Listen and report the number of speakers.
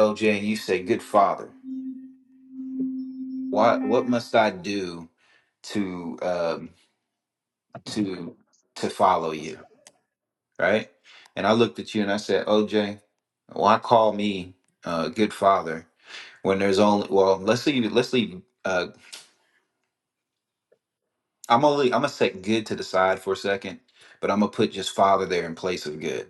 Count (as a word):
one